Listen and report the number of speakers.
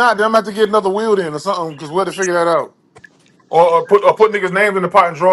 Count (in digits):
1